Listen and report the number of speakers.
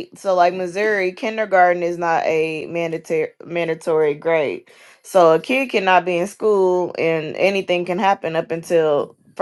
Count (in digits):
1